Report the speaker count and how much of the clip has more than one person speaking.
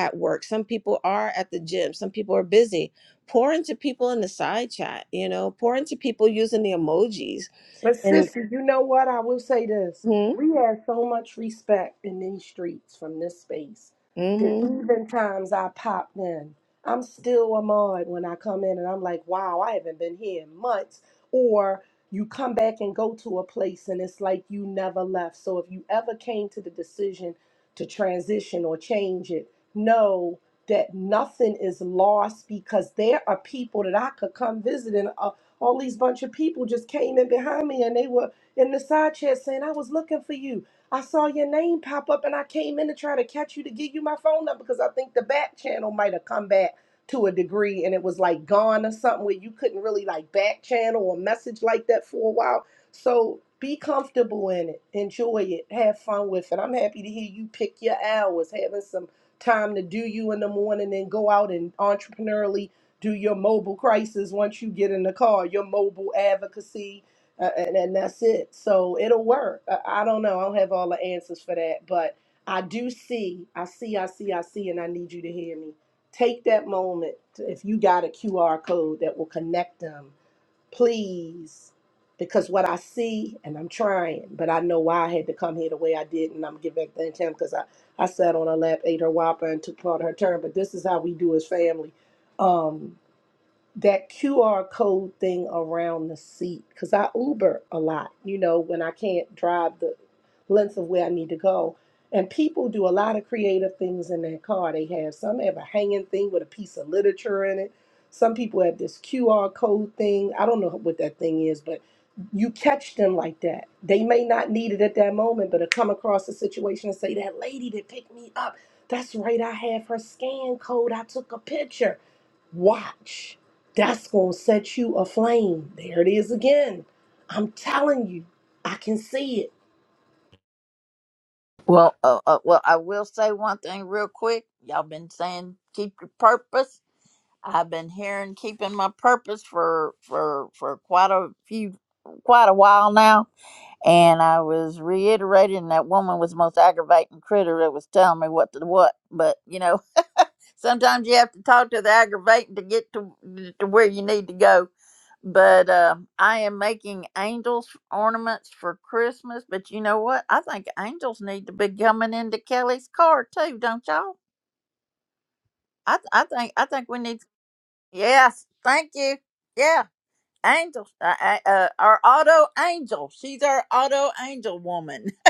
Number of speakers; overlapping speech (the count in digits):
3, under 1%